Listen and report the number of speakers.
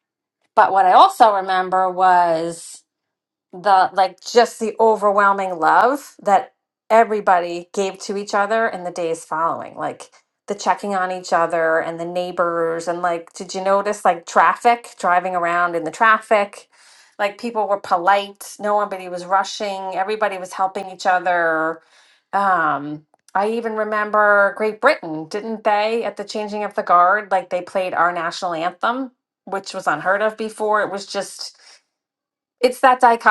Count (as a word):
one